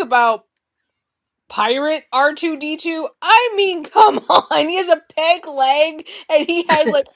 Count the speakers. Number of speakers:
1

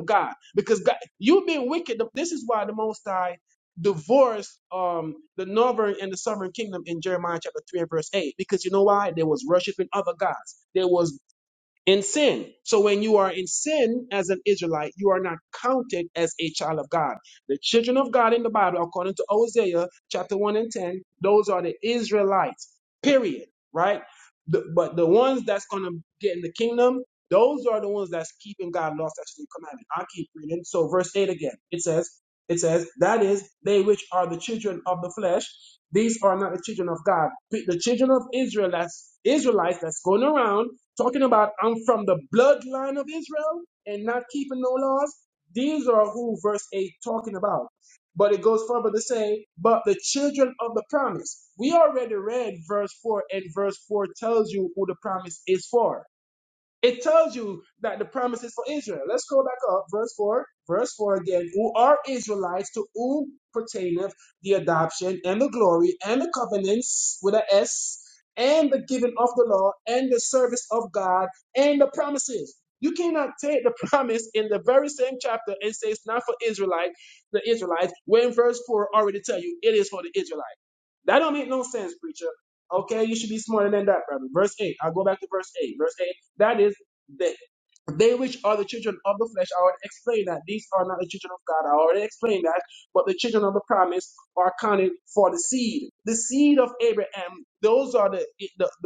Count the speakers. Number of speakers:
1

